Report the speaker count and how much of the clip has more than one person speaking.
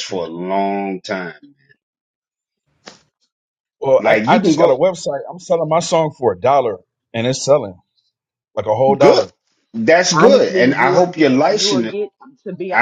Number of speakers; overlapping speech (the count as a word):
three, about 25%